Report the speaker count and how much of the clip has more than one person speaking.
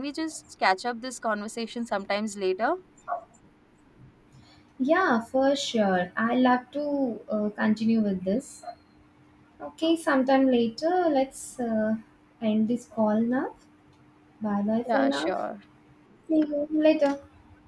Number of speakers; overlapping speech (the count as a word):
two, about 3%